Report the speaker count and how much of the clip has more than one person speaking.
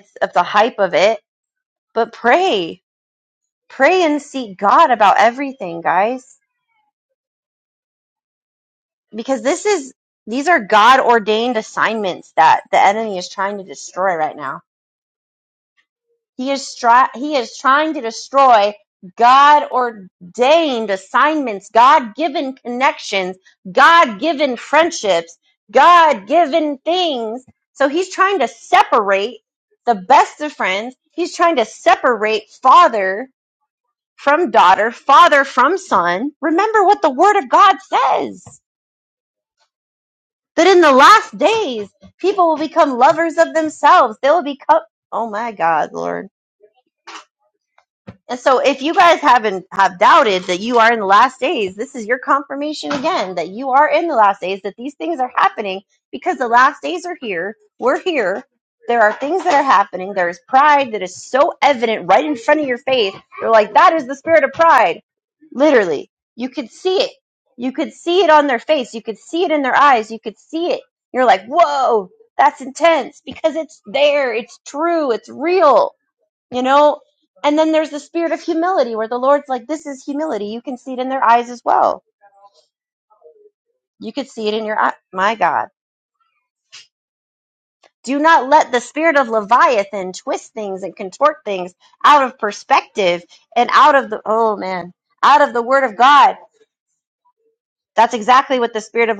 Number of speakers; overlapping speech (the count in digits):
1, no overlap